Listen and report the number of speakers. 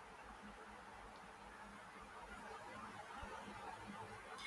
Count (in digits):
0